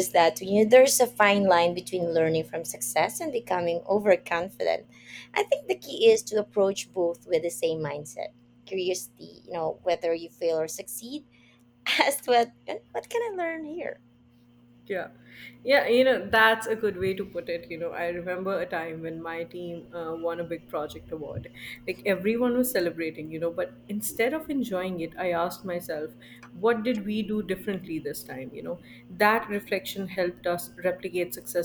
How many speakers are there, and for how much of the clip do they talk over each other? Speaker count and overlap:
two, no overlap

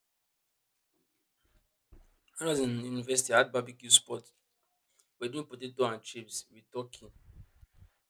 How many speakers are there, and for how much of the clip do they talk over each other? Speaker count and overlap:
one, no overlap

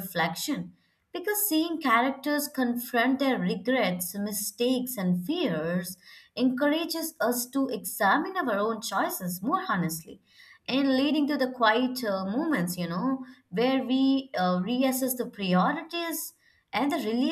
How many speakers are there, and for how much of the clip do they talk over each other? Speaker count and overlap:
one, no overlap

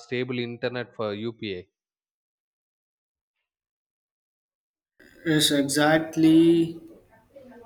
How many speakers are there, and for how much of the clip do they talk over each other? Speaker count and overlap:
two, no overlap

